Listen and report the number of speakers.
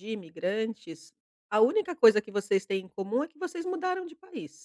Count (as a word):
one